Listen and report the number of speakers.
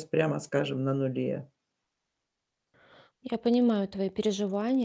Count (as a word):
two